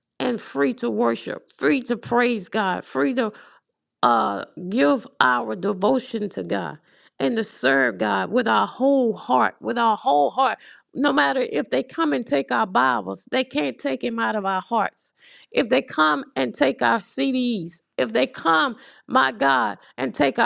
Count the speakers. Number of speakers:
1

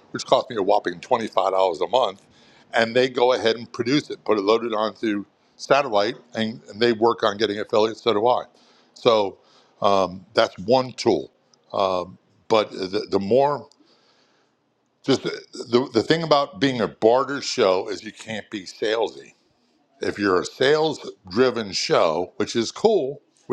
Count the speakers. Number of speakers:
1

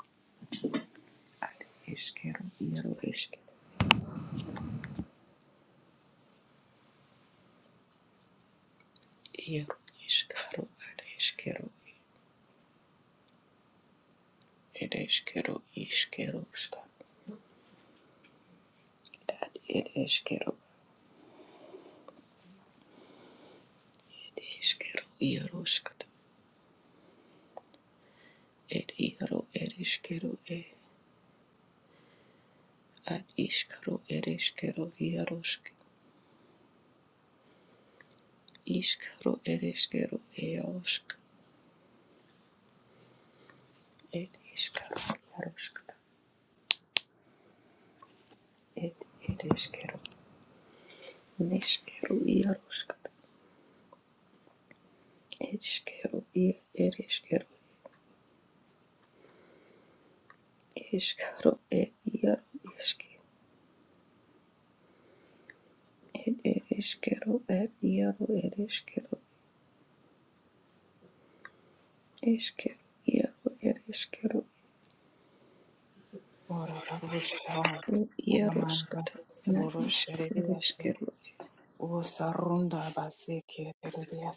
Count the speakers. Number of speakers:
2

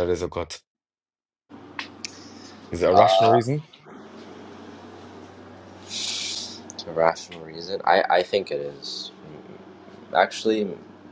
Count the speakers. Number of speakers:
2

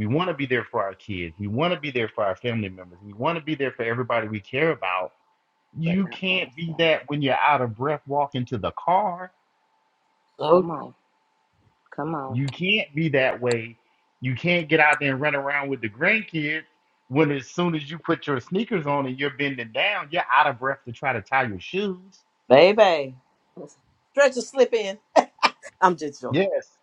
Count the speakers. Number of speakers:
3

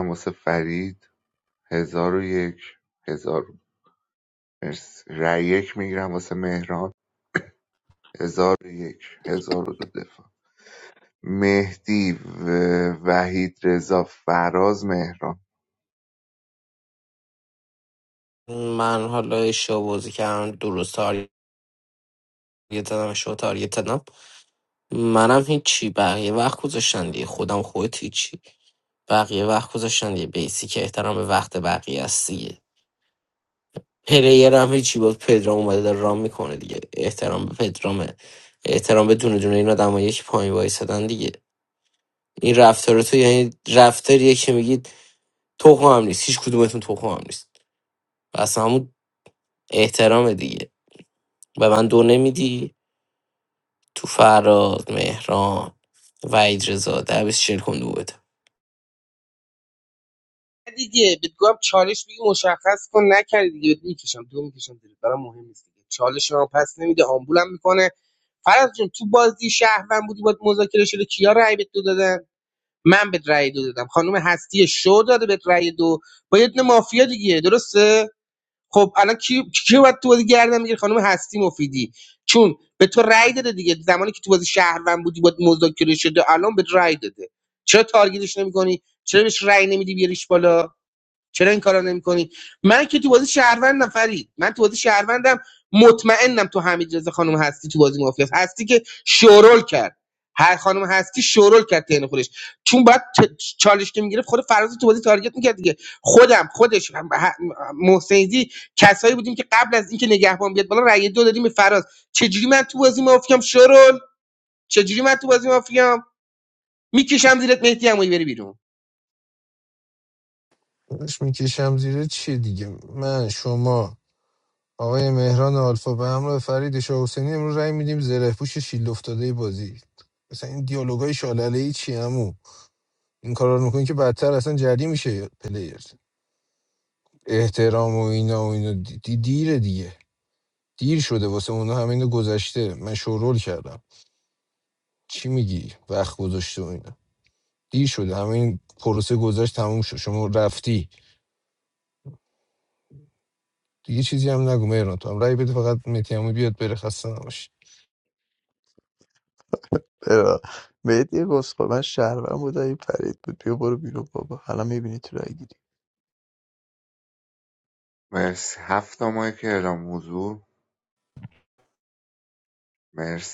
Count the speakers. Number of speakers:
5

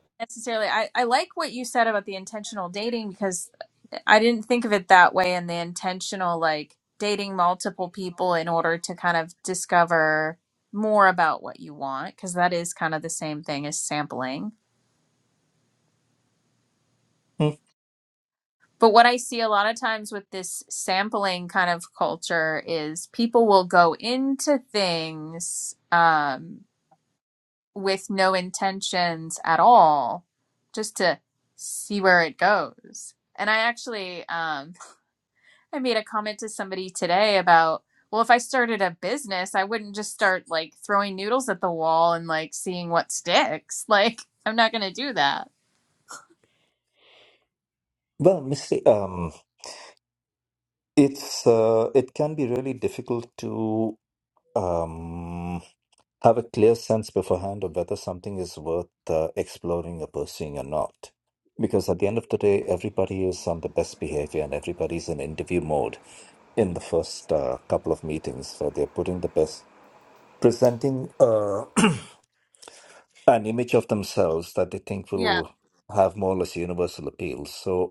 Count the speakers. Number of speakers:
2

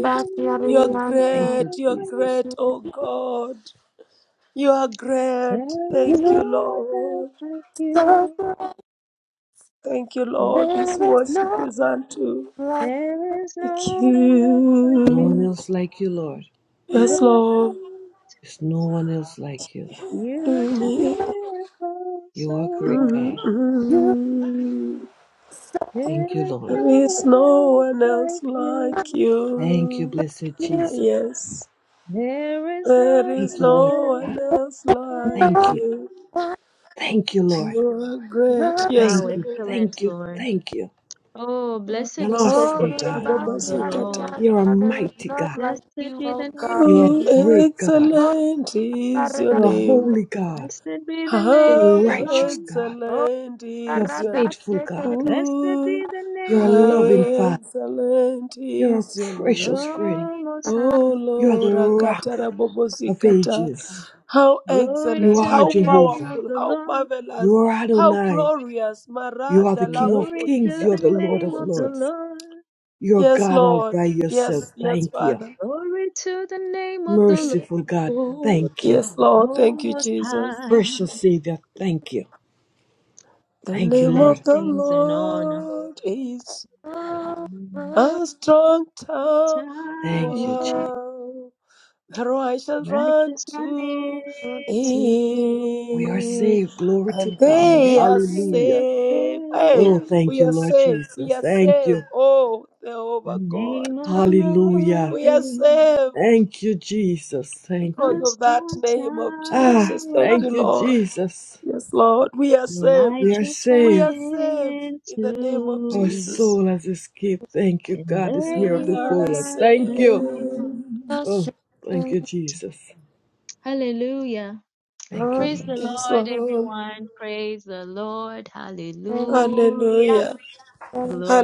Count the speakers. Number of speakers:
4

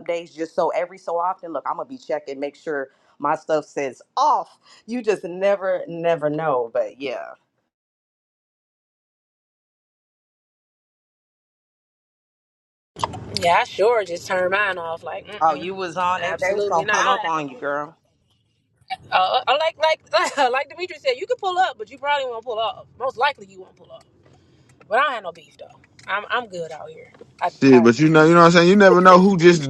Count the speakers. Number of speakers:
3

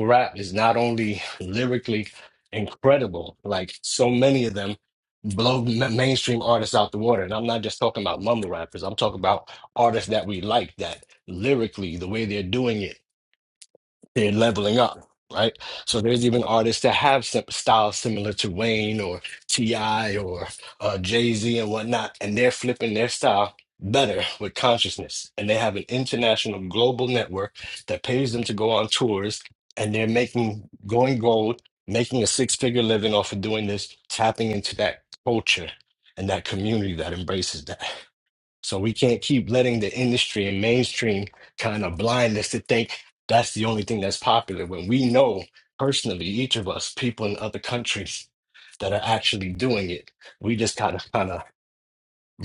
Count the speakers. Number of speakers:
1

